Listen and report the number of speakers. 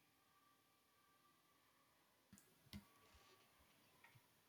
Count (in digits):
0